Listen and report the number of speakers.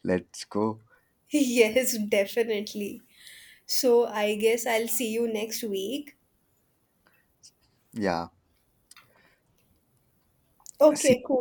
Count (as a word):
two